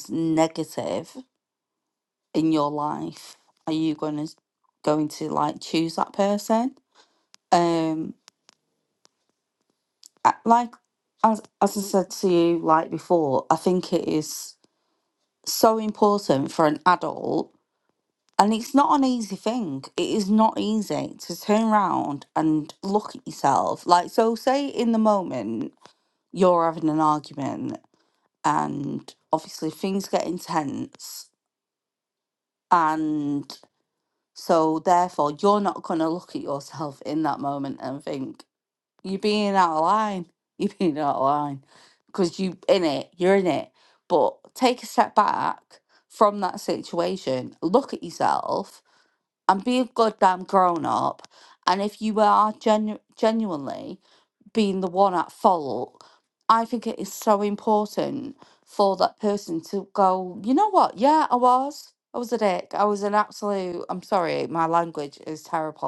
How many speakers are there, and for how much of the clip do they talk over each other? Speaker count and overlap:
1, no overlap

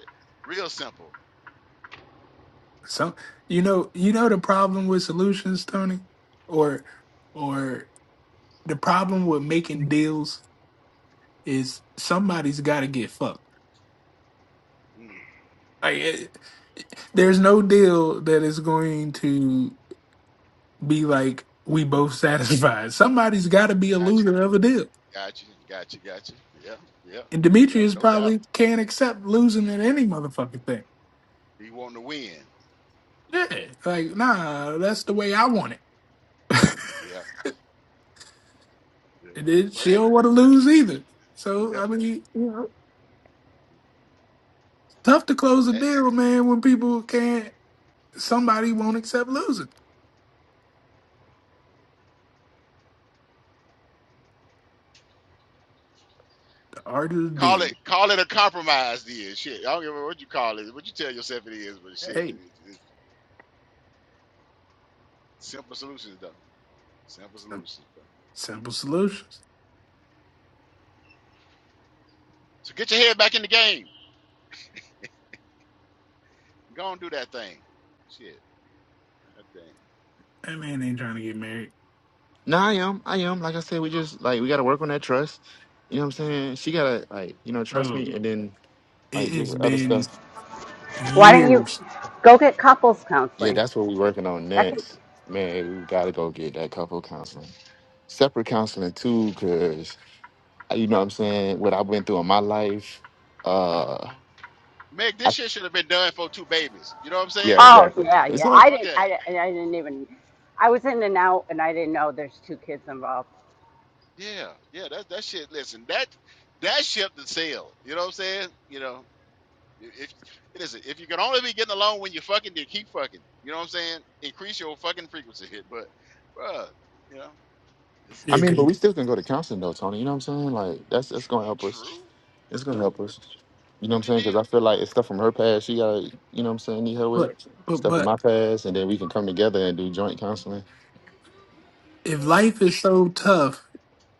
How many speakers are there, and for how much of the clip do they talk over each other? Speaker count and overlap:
4, about 6%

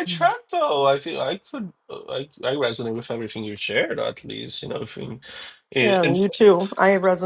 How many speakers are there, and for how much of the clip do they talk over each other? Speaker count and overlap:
2, about 5%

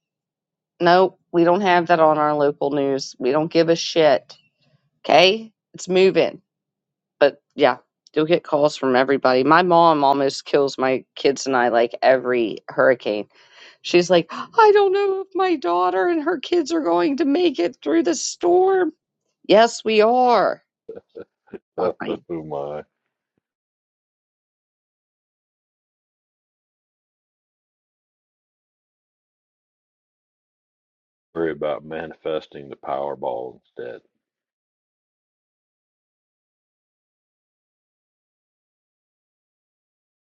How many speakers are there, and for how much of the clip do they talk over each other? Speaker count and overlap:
2, no overlap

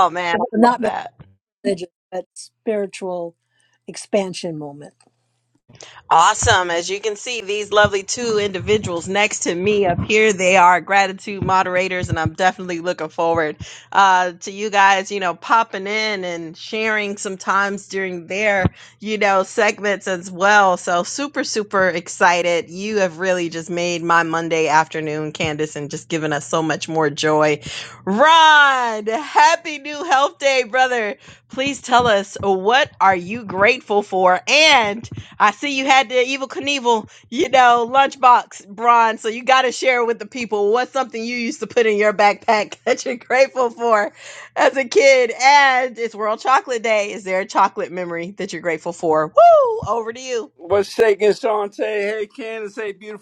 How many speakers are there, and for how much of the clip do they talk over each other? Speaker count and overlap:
3, about 1%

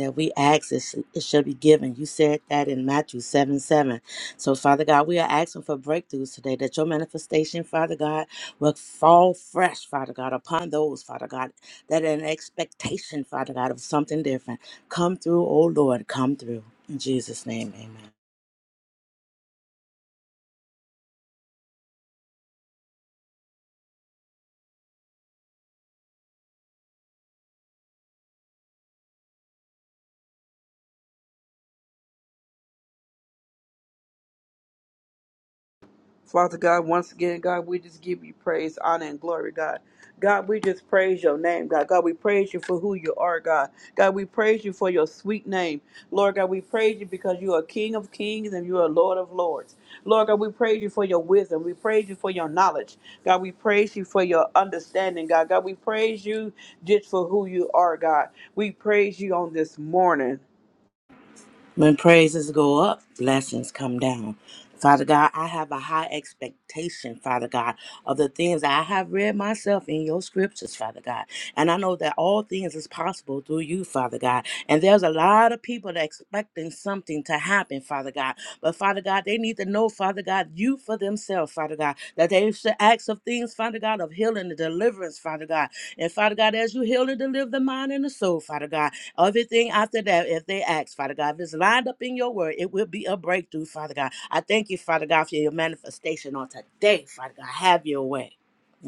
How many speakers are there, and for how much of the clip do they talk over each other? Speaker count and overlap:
2, no overlap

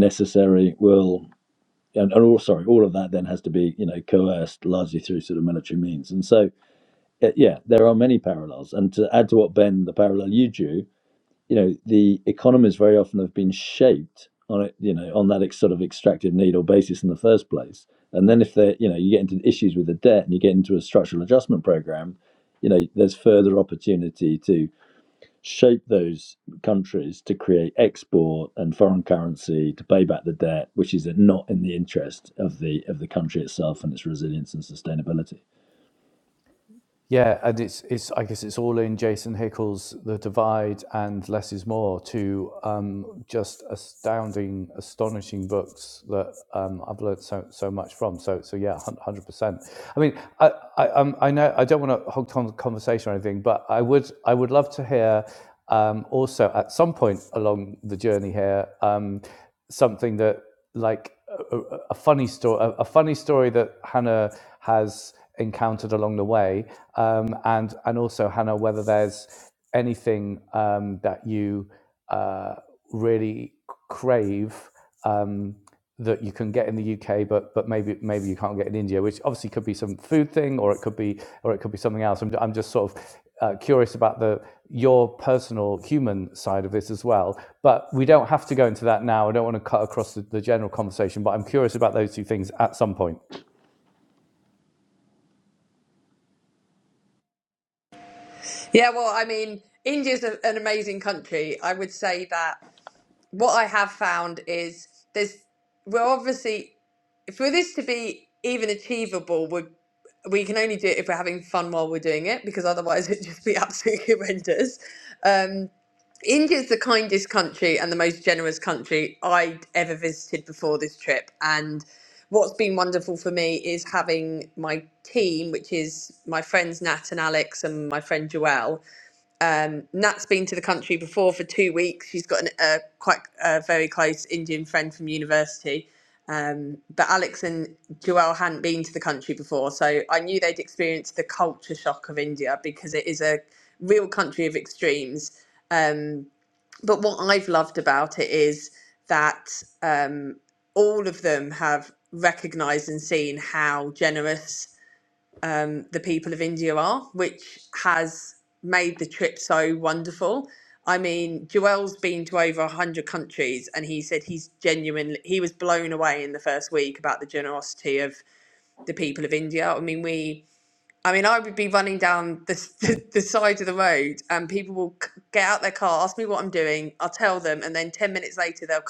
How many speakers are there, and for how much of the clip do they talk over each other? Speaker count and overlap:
3, no overlap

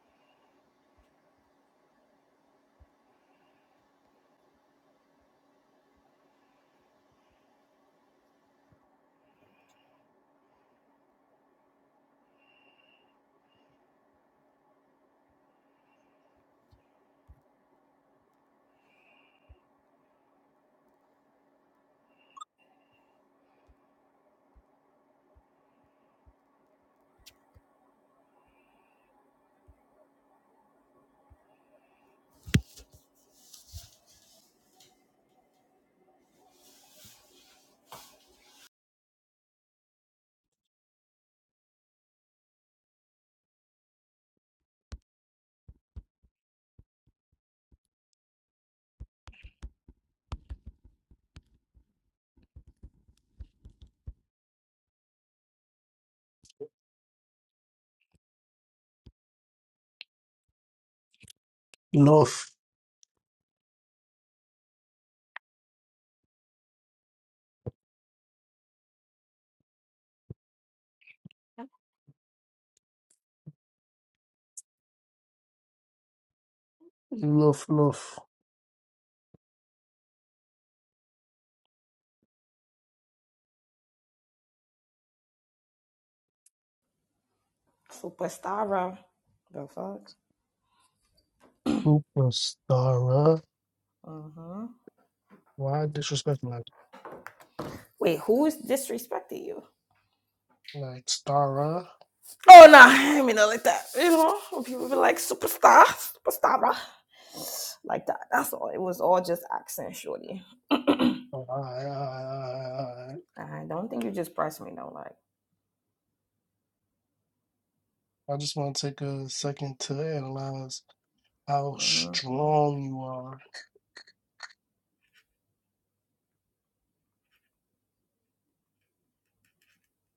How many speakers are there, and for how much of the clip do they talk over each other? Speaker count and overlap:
2, under 1%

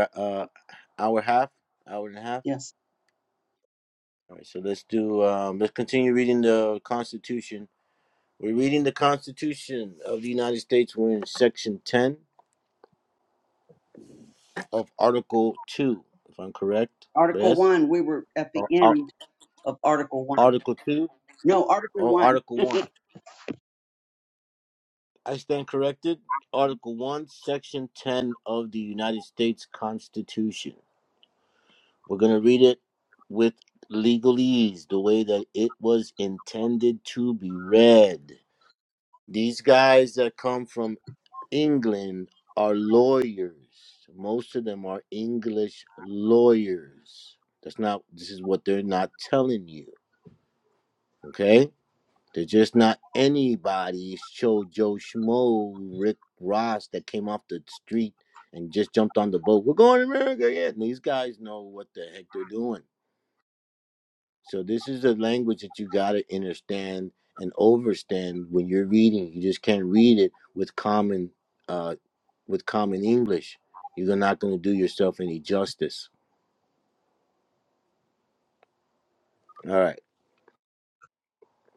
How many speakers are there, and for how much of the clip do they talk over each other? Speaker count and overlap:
2, about 1%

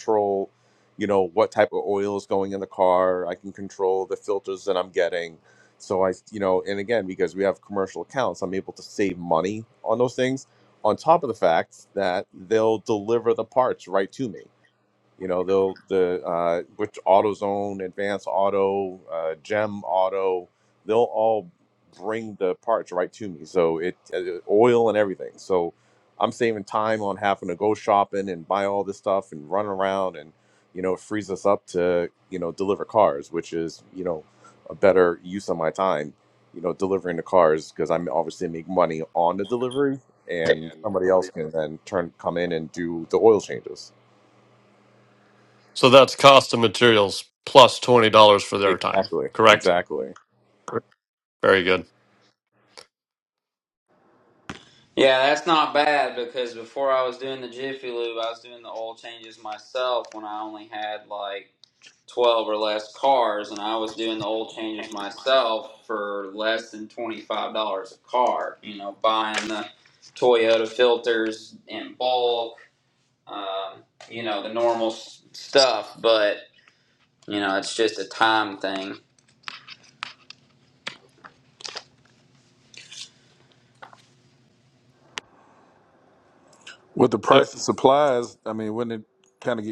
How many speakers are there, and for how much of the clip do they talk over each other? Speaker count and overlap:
4, about 2%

